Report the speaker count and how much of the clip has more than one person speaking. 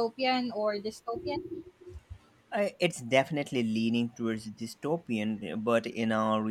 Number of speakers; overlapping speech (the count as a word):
two, no overlap